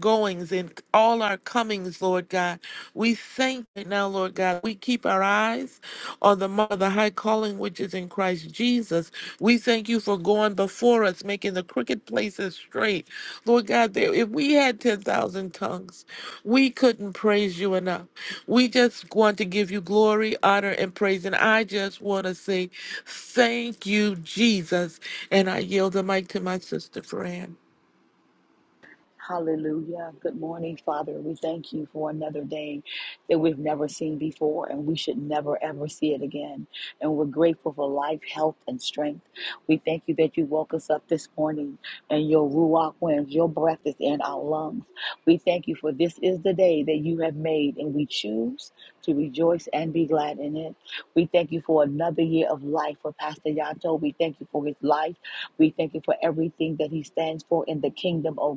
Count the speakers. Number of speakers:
two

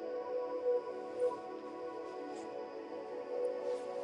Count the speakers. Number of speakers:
zero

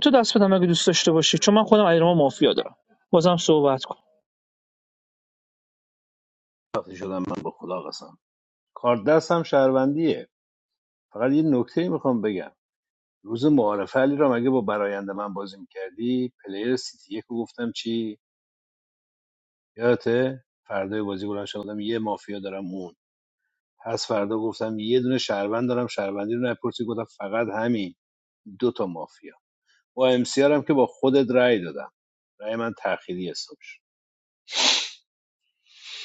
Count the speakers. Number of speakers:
two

